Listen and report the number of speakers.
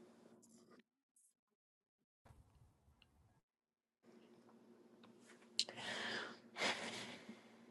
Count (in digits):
0